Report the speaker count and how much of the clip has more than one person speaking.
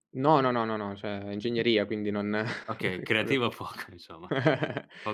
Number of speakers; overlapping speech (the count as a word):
two, about 9%